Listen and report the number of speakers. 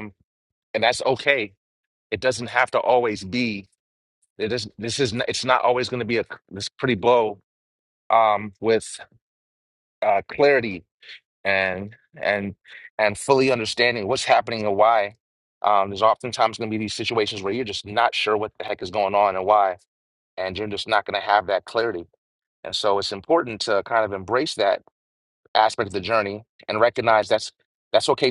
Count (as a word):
one